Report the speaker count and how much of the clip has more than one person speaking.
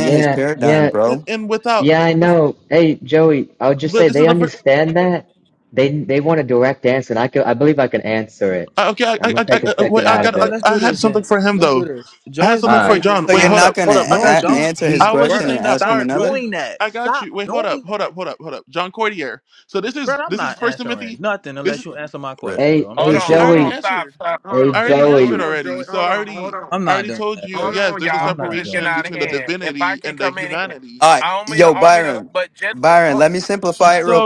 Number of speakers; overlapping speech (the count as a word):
five, about 60%